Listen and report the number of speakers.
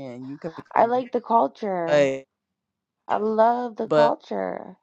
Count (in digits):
2